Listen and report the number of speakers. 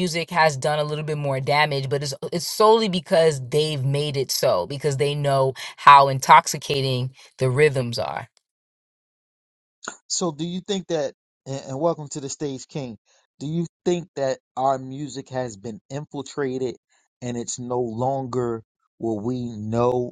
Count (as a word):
two